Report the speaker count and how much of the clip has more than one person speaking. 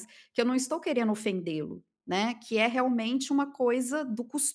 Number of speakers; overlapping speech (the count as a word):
one, no overlap